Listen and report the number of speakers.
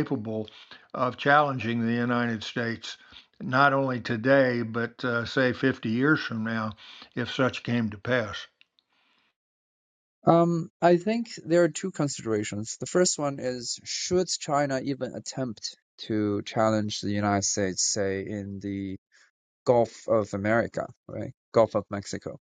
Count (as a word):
two